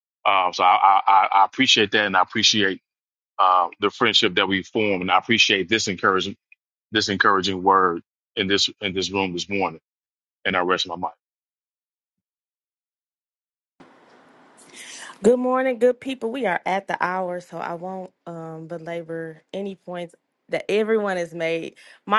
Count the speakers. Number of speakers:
2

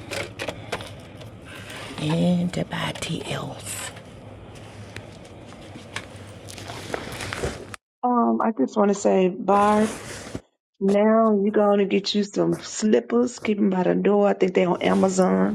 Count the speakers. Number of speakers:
2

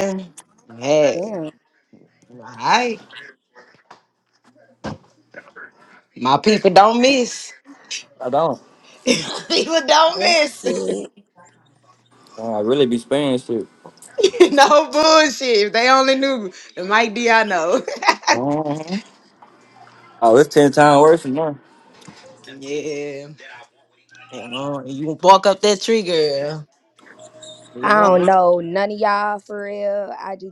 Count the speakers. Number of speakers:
3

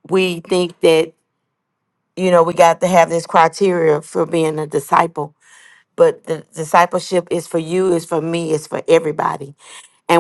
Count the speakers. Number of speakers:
1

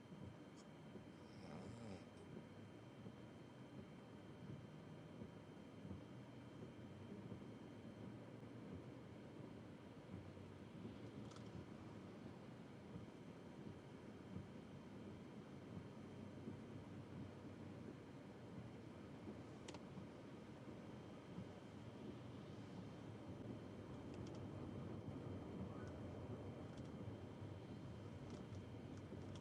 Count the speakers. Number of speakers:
0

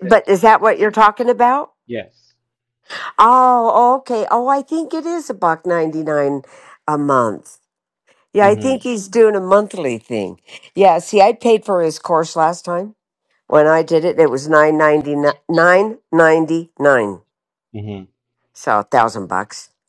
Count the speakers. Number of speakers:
2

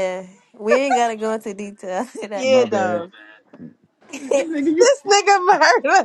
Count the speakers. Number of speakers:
3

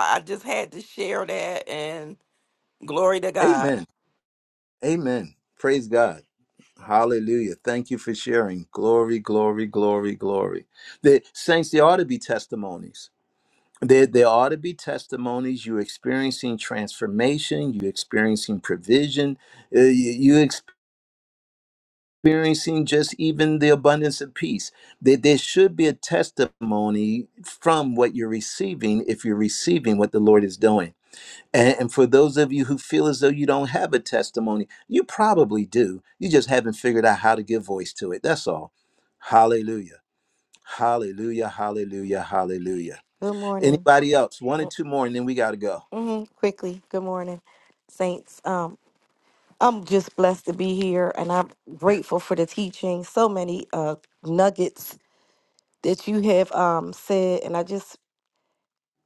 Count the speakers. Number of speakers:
3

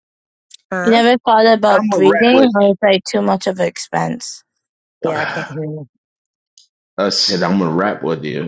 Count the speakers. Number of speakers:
3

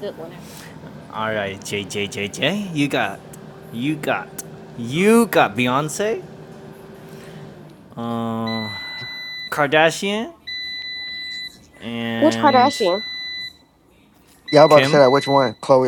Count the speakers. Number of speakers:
3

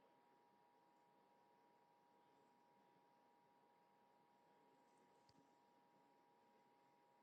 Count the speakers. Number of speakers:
0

